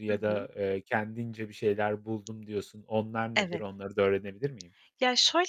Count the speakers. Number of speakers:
2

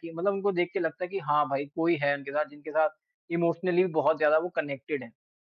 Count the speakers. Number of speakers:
1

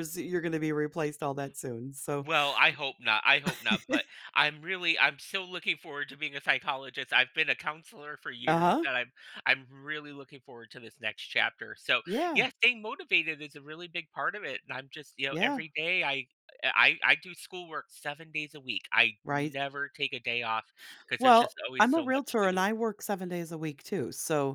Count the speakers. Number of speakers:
2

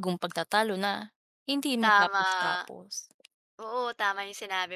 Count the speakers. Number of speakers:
2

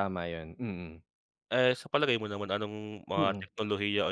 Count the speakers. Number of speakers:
2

